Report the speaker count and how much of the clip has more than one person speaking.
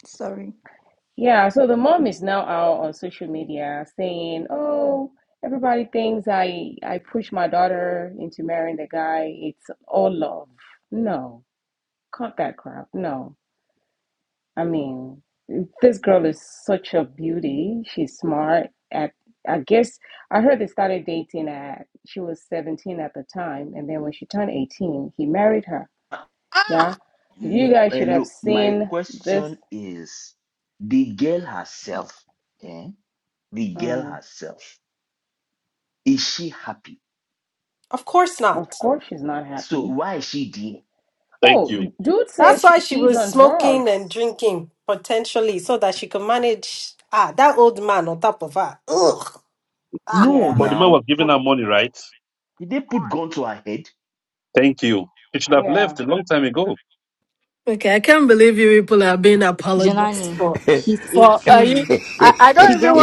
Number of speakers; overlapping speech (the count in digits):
6, about 12%